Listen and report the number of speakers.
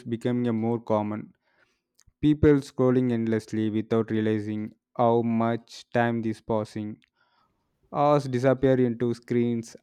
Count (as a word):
one